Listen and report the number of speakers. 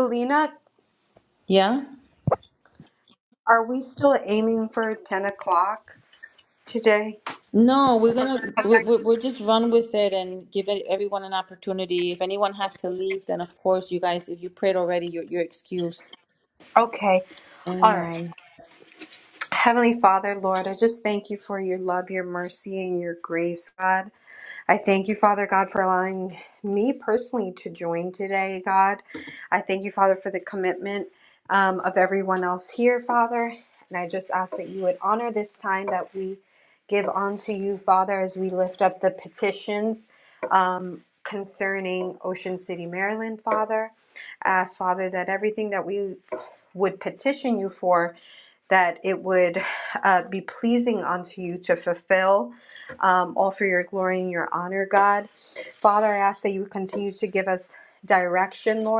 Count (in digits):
2